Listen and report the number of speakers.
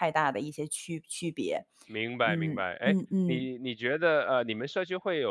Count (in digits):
2